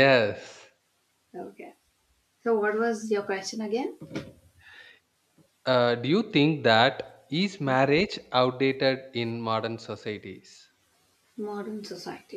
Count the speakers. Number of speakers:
2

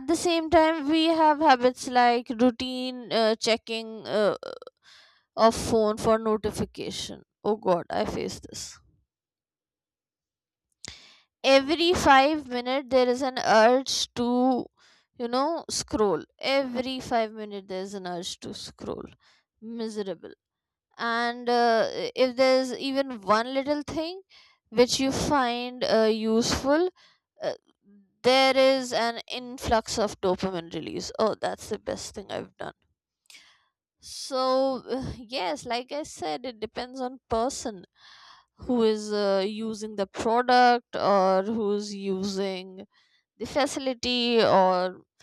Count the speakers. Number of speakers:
1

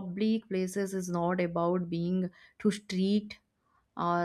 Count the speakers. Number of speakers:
1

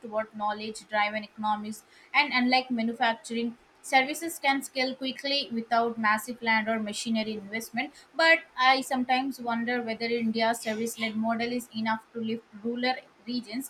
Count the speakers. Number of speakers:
1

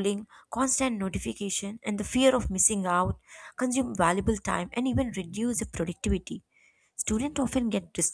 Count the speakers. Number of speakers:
1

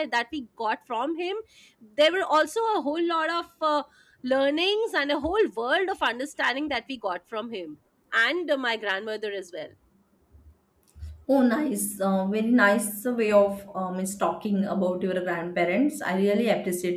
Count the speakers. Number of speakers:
2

